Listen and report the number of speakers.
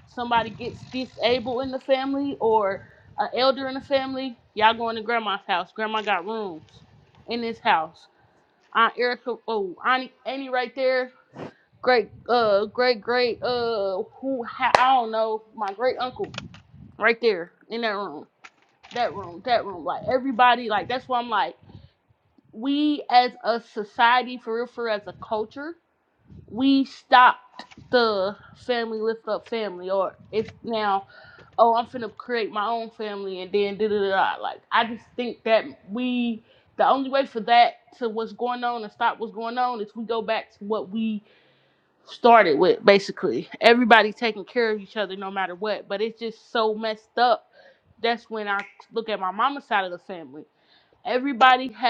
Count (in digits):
1